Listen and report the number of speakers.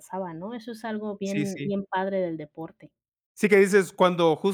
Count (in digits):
2